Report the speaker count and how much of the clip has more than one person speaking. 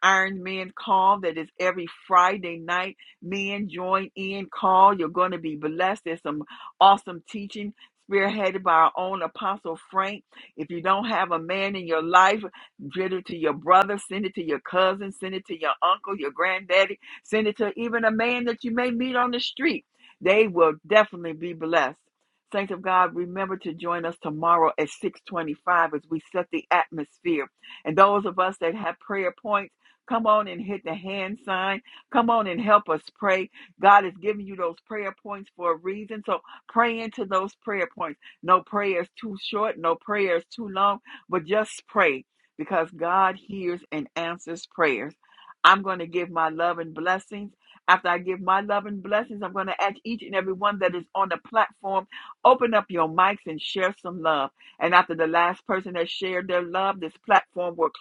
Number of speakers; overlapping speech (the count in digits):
1, no overlap